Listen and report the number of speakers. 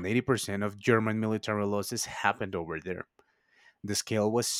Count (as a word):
one